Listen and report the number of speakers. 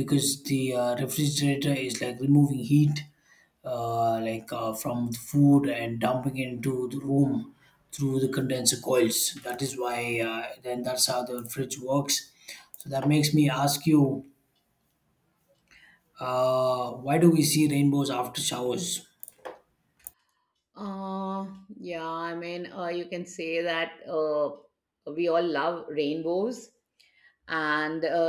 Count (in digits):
2